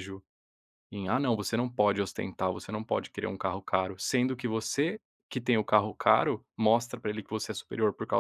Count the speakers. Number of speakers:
1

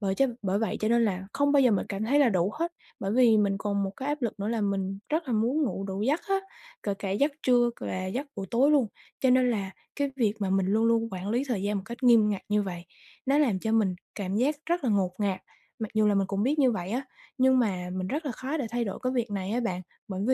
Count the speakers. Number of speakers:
1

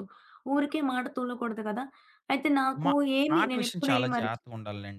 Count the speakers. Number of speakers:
2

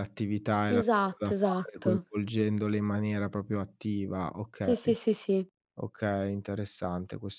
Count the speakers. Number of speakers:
2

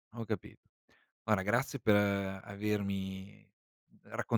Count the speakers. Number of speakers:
1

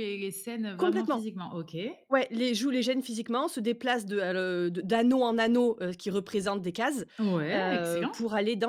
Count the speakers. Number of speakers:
2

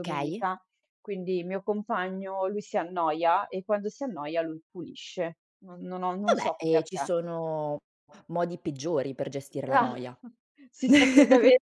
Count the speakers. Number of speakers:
2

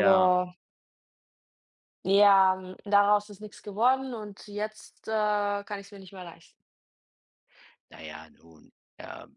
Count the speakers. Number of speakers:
2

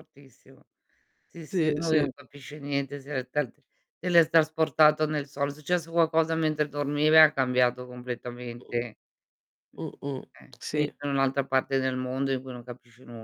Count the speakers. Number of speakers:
2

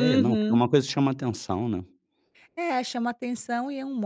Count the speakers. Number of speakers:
2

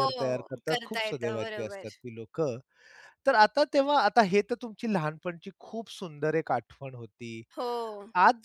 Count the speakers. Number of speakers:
2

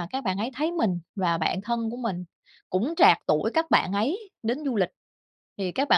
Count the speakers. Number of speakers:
1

